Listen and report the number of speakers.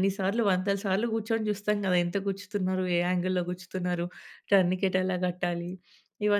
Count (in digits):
1